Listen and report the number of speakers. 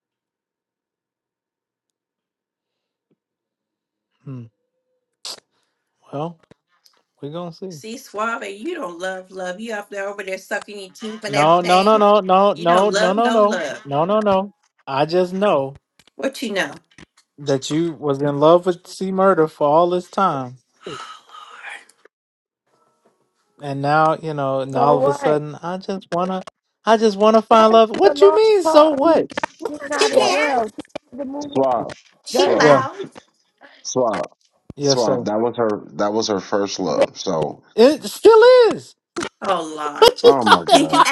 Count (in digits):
4